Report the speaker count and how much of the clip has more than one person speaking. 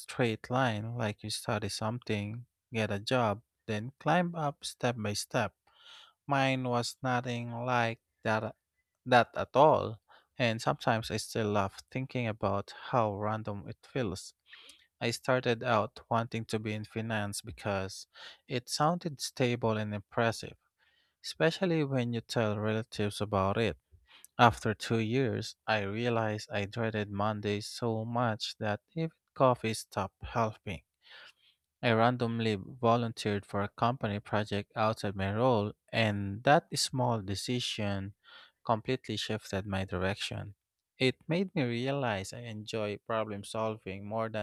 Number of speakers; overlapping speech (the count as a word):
one, no overlap